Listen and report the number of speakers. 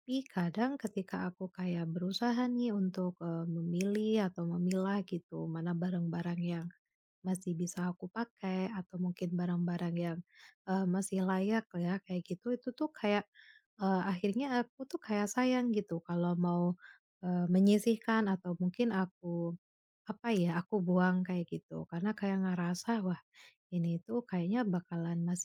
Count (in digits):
1